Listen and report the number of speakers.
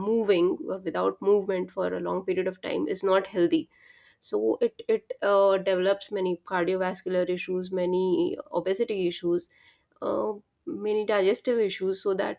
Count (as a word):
one